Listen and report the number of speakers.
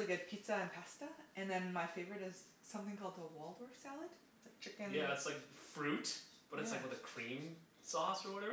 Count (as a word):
two